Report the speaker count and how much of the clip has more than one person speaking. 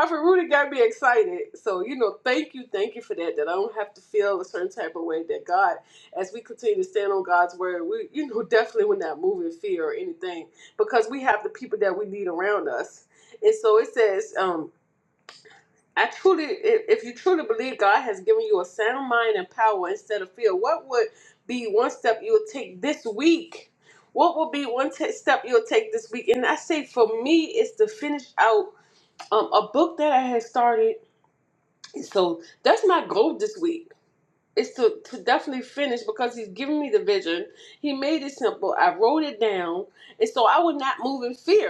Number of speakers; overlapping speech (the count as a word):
one, no overlap